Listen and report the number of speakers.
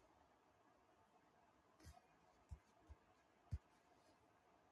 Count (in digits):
0